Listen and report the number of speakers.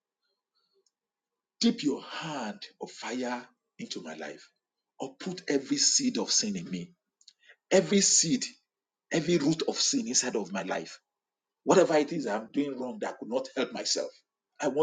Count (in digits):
1